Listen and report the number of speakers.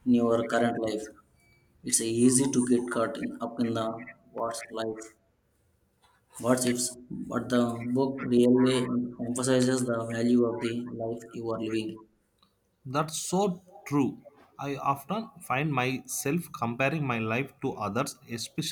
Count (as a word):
two